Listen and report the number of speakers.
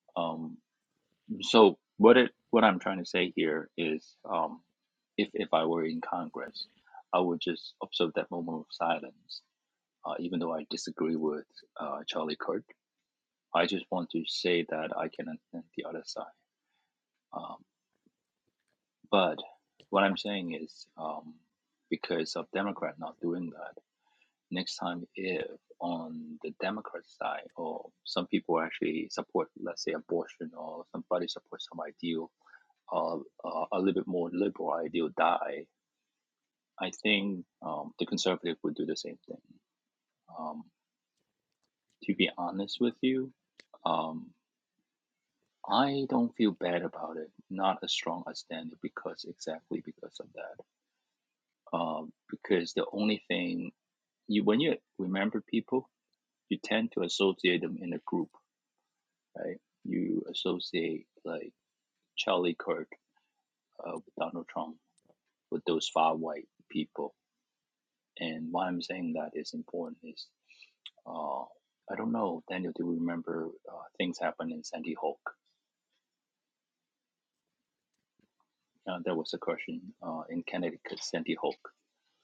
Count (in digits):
1